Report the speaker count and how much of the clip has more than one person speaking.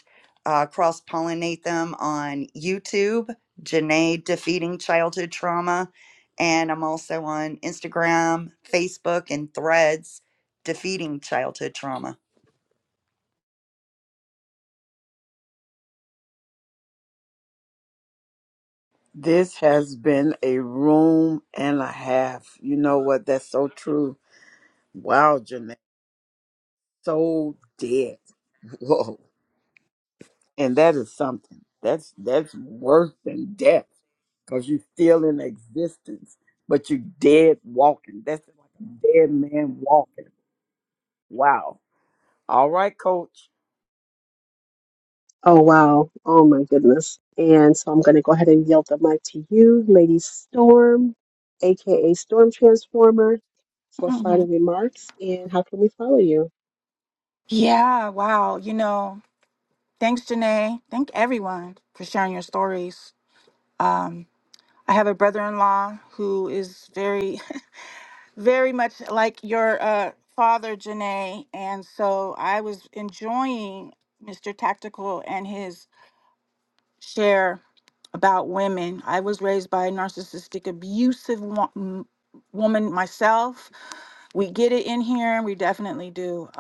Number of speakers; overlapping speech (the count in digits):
4, under 1%